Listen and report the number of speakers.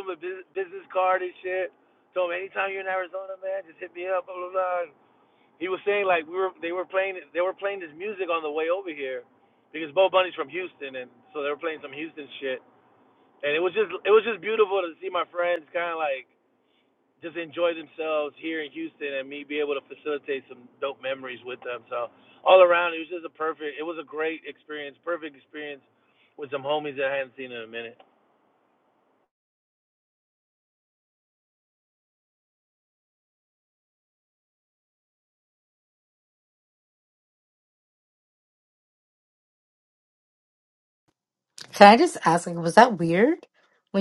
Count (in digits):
2